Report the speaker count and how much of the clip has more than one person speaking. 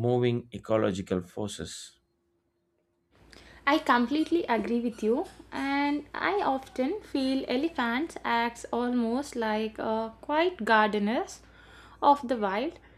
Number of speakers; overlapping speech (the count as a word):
two, no overlap